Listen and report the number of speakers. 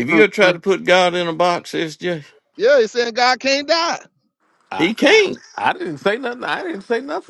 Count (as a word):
three